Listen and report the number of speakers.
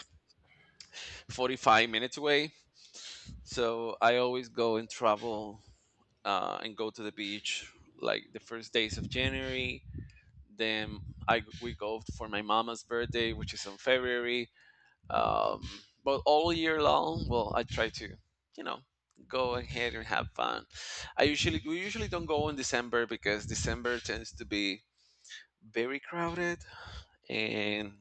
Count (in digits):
1